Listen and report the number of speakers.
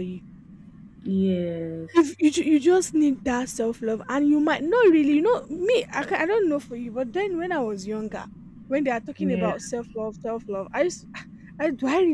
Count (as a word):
two